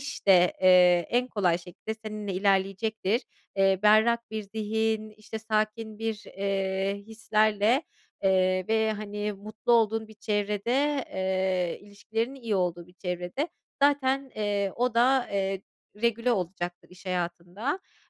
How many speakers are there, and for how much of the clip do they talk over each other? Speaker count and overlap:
one, no overlap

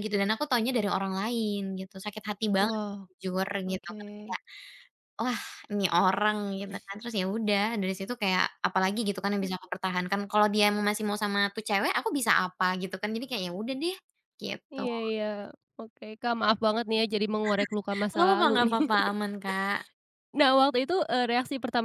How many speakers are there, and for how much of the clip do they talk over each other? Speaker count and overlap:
two, about 8%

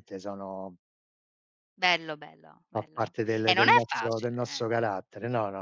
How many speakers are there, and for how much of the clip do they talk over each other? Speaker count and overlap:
two, about 28%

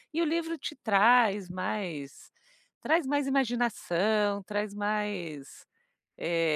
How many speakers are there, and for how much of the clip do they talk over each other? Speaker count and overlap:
one, no overlap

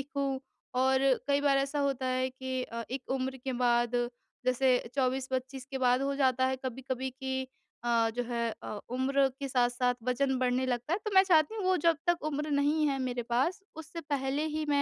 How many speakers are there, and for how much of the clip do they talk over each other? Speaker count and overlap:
one, no overlap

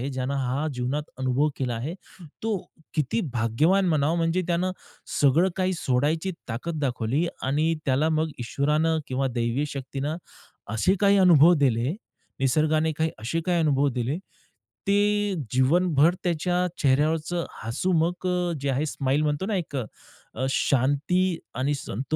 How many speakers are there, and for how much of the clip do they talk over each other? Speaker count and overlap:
one, no overlap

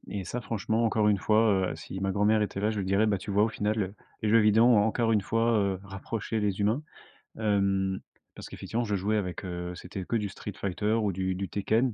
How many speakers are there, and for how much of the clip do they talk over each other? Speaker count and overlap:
one, no overlap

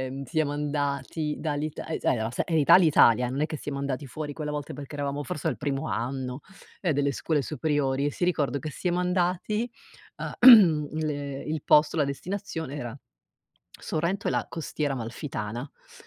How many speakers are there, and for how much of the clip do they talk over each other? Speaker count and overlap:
one, no overlap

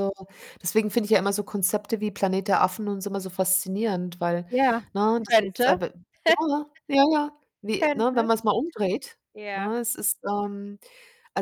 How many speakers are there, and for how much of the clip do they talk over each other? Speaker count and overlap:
two, about 6%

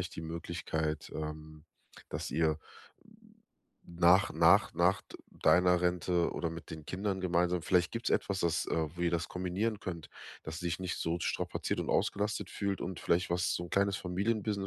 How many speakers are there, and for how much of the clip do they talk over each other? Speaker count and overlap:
one, no overlap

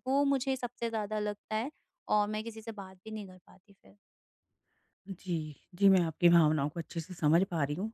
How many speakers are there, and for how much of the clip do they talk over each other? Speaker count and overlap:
two, no overlap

